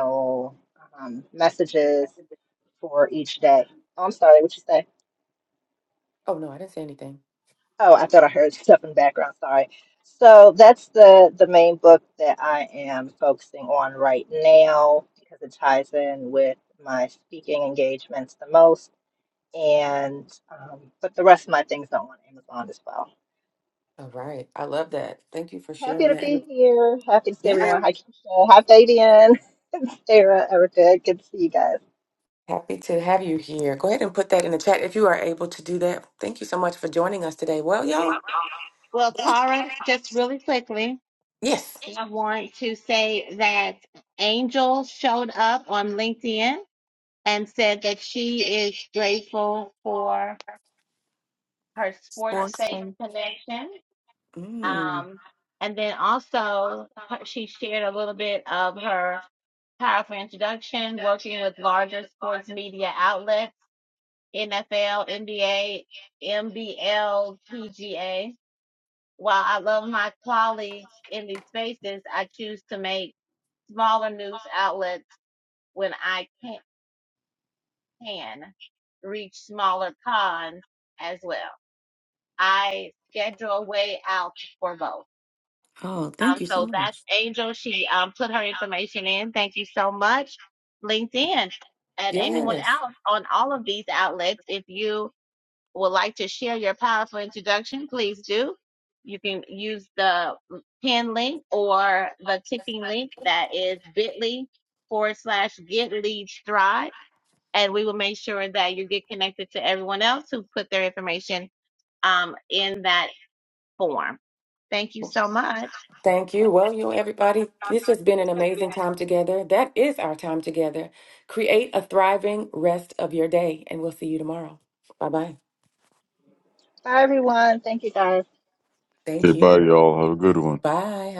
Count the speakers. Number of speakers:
four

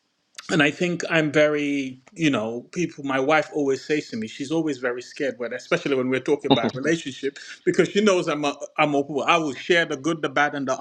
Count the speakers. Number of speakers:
one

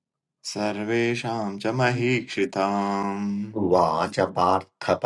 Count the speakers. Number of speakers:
two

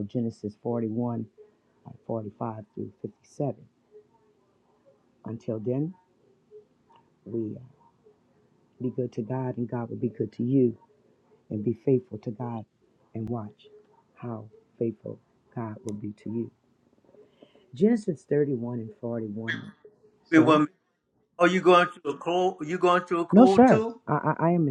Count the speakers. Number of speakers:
two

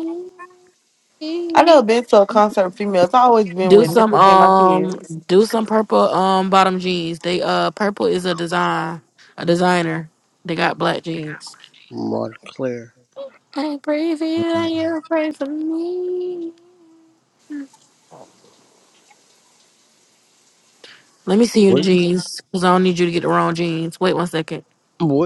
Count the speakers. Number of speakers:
three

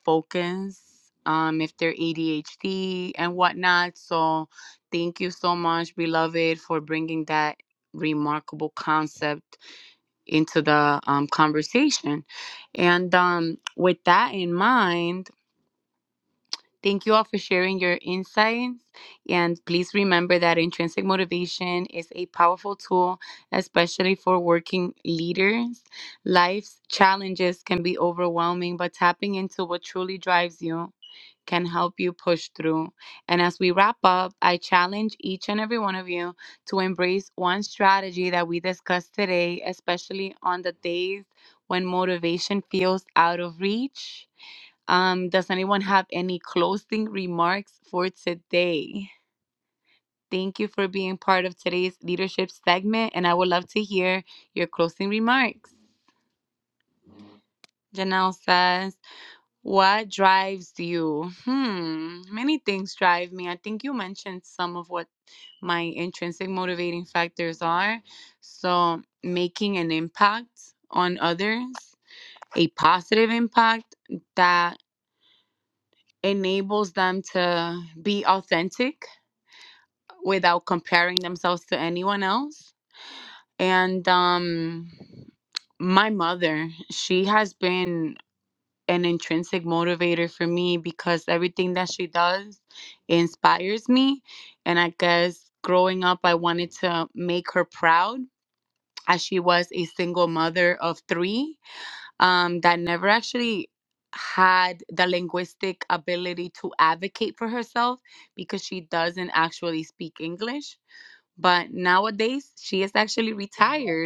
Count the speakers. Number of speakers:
one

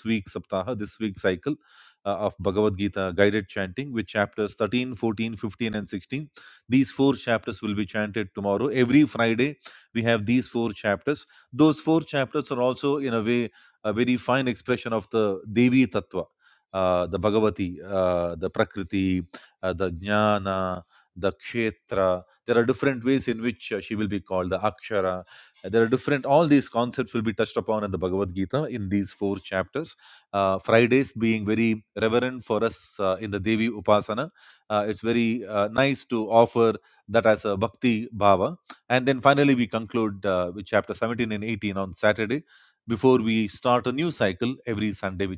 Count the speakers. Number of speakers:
one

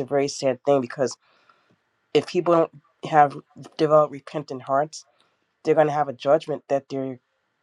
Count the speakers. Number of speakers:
one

